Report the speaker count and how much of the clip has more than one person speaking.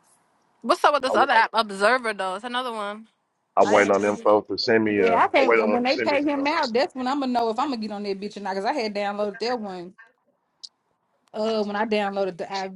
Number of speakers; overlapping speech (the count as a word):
three, about 19%